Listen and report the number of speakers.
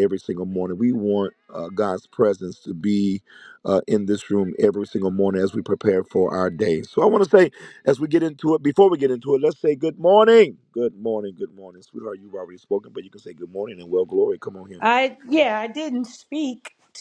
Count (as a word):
two